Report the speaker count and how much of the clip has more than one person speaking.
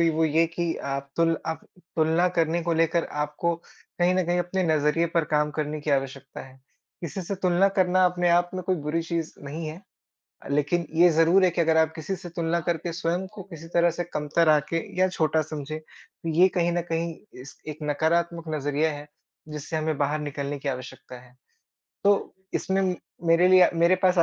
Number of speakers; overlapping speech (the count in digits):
1, no overlap